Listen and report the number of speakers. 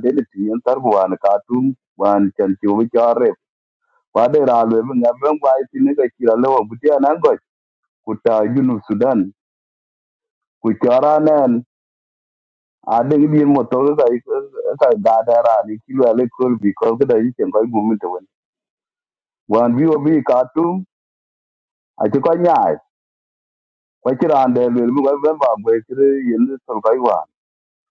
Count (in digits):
1